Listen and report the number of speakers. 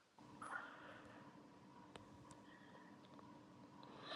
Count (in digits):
0